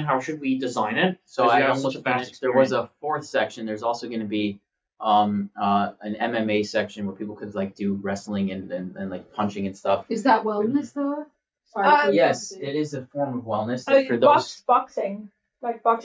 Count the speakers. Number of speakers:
4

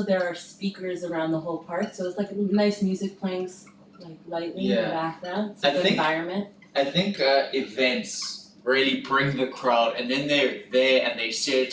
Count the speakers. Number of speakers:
2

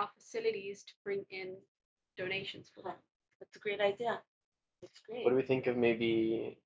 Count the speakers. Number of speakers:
3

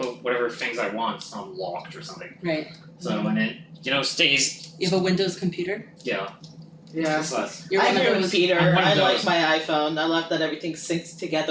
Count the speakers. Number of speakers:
3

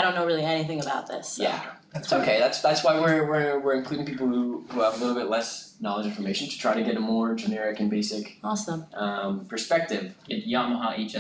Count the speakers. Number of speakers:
3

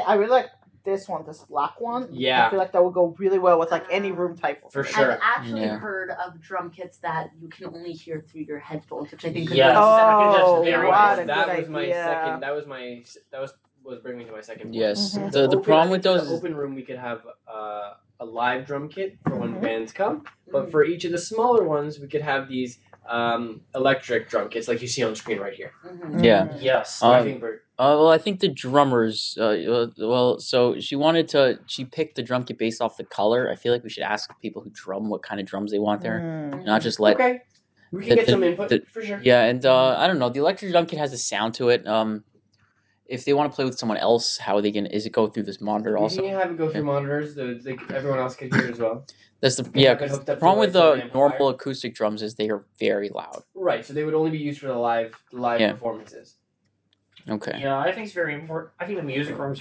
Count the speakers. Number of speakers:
5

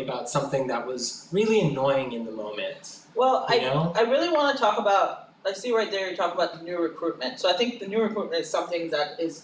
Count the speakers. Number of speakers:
2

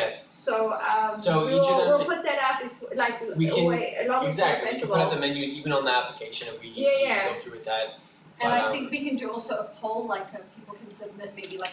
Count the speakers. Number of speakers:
3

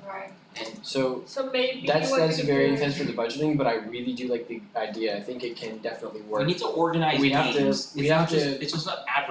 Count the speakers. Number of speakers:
3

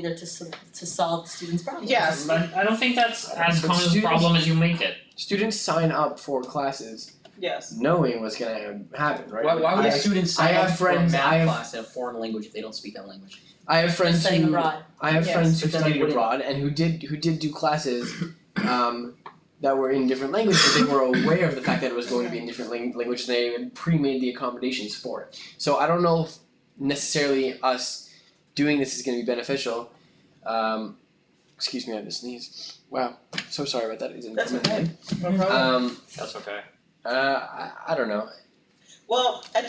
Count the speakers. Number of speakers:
5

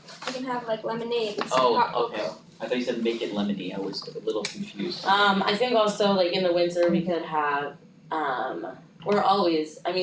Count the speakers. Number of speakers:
3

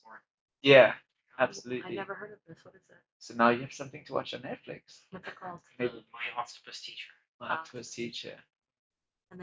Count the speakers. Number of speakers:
3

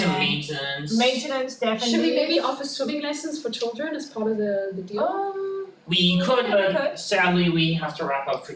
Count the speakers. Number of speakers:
3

